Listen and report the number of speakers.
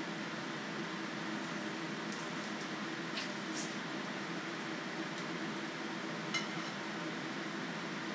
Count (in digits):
0